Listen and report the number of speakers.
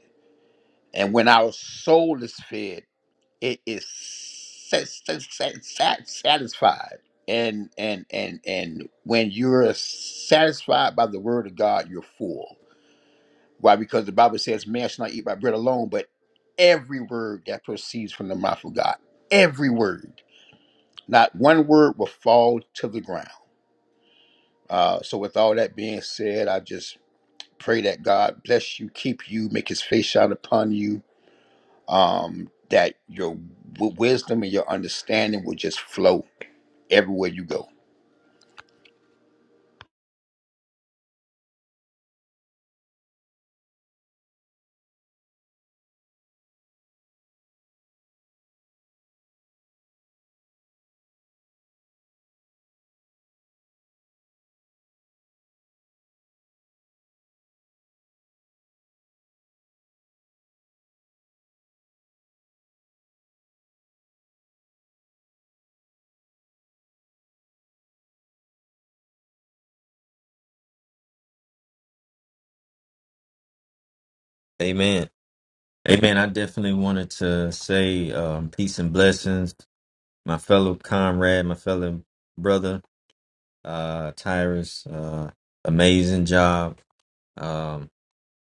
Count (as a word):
two